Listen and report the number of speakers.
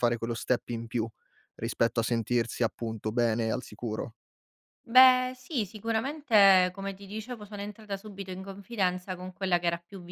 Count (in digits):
2